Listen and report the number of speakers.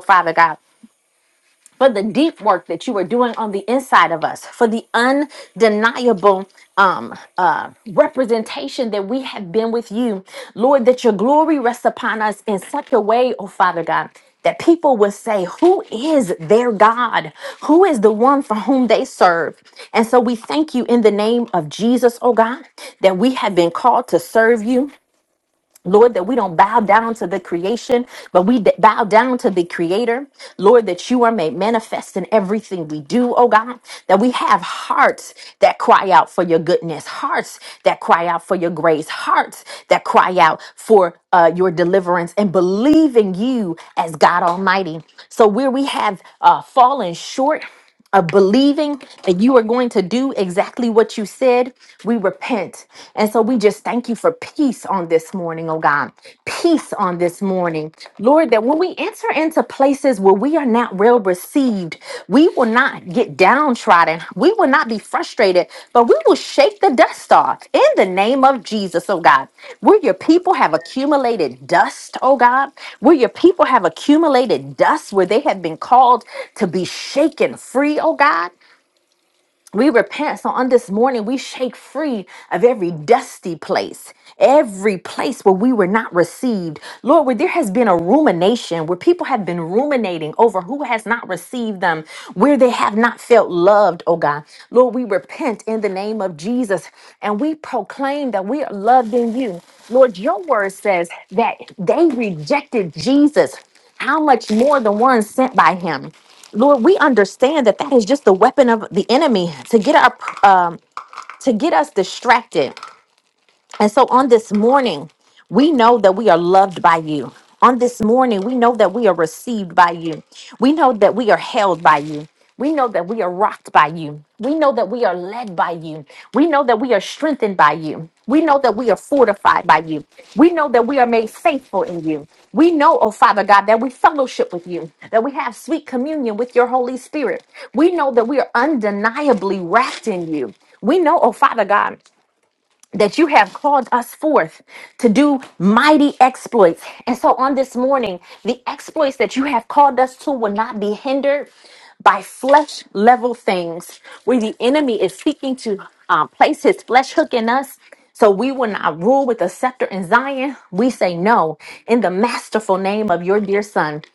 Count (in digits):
1